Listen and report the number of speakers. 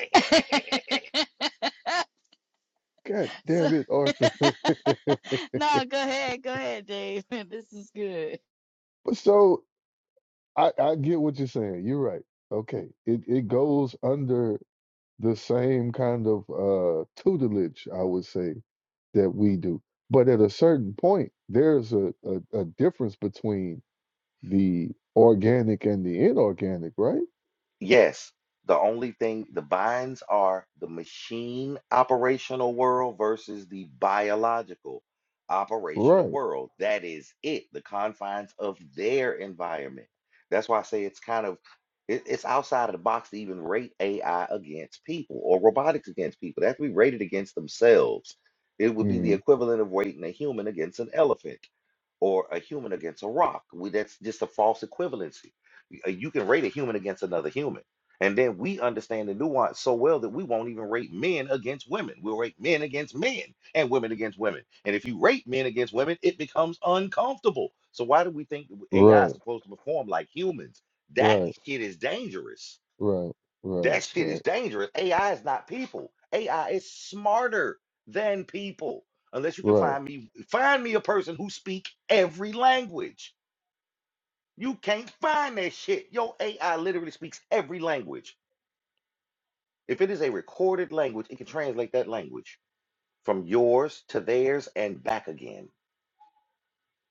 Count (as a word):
three